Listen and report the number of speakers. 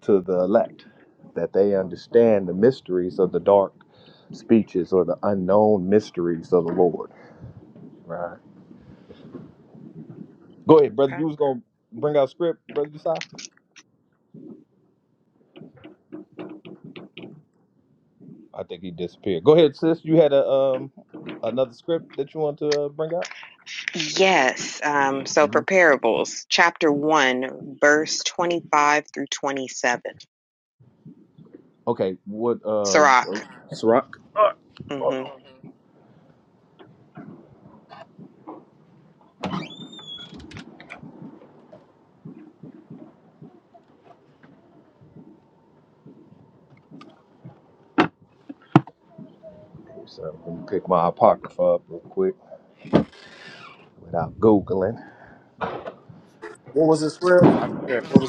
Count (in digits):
3